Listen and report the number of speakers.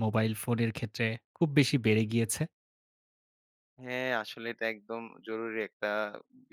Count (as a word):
two